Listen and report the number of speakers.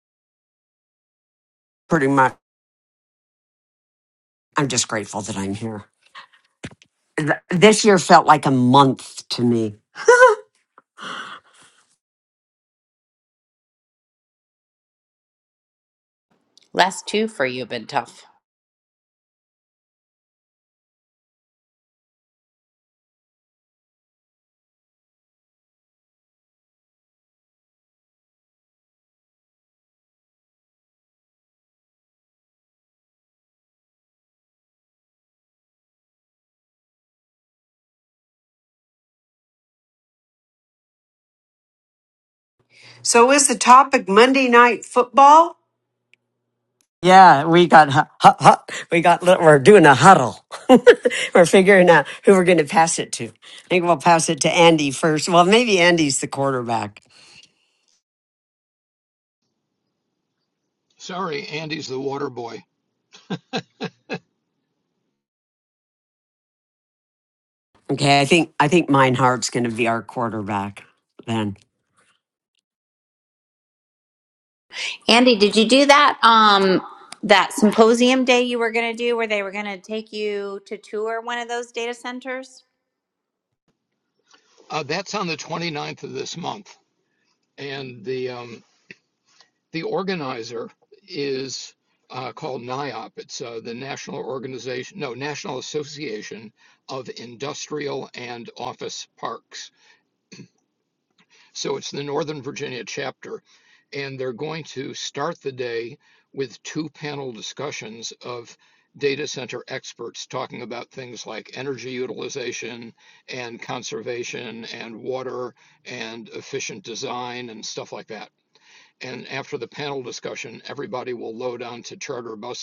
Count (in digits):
4